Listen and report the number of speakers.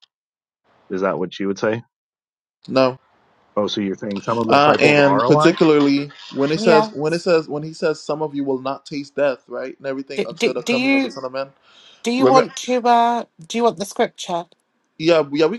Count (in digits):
3